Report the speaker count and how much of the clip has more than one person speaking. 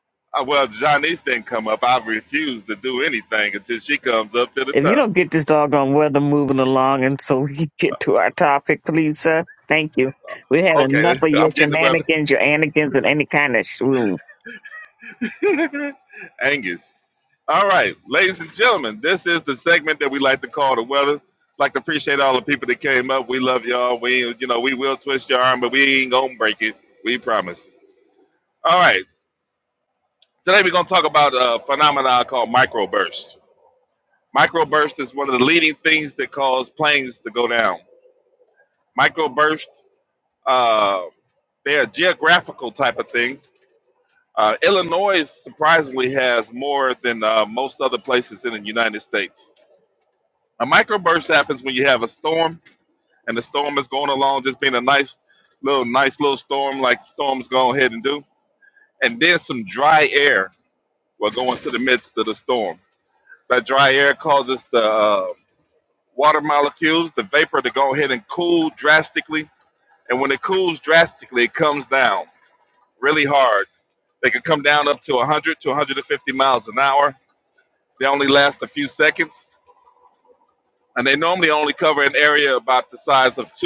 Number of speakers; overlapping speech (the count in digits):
2, about 2%